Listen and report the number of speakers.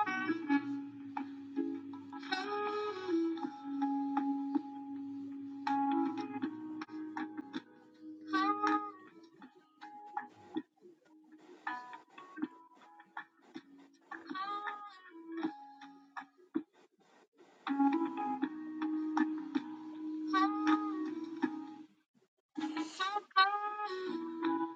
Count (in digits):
0